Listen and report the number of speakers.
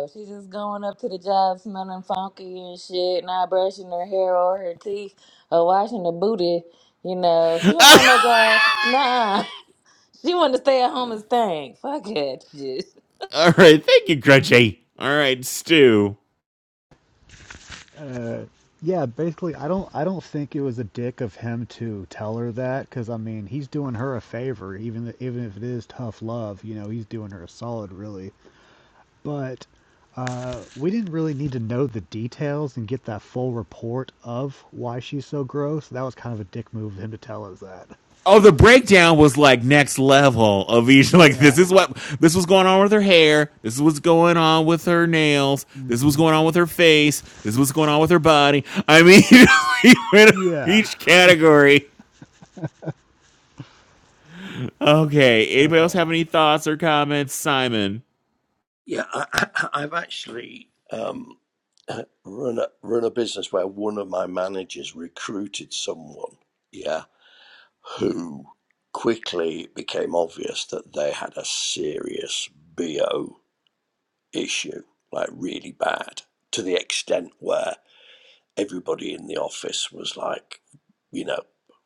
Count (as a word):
four